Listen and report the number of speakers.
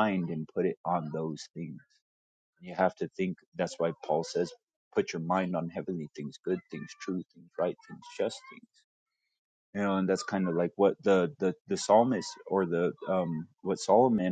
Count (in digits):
1